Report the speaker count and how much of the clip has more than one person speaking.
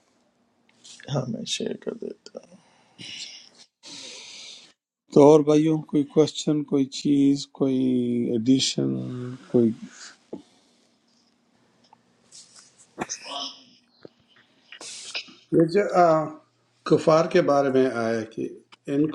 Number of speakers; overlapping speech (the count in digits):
3, no overlap